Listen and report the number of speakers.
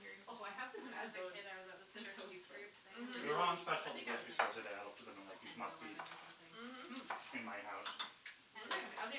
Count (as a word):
four